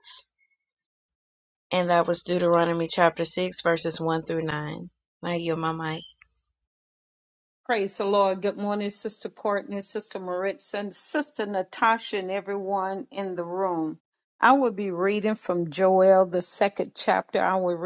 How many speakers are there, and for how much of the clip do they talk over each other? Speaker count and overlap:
two, no overlap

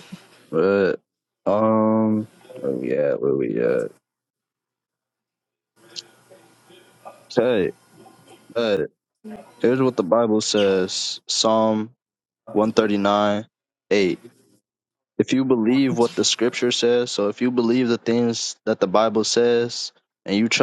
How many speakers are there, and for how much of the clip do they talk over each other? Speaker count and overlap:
one, no overlap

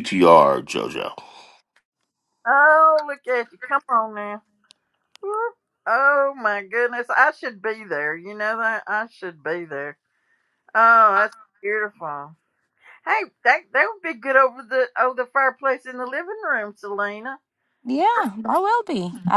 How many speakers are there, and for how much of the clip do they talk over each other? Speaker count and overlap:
three, no overlap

